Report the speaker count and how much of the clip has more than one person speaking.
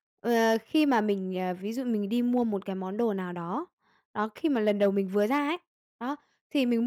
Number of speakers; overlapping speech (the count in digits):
1, no overlap